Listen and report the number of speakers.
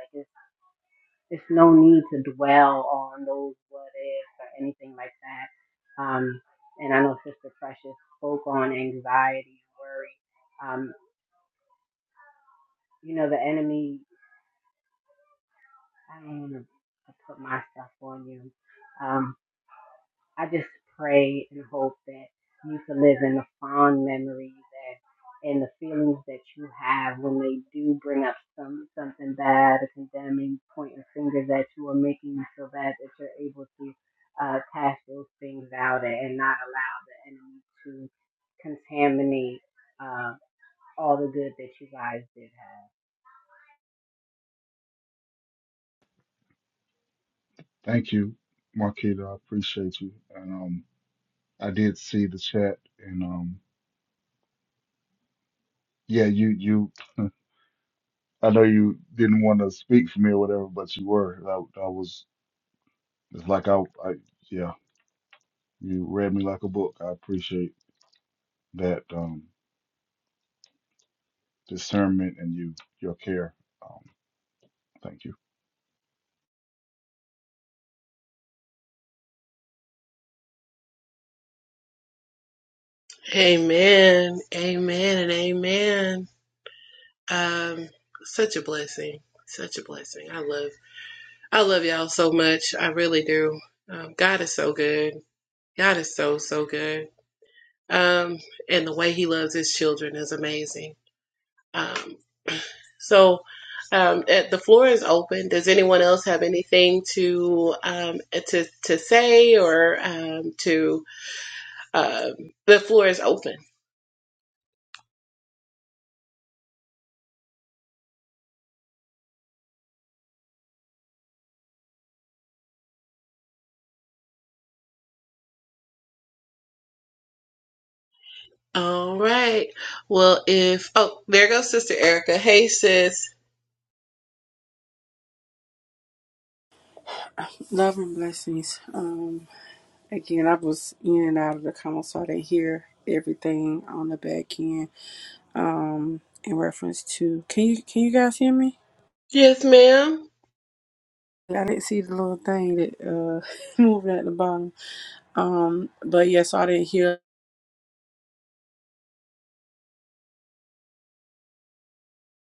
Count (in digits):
4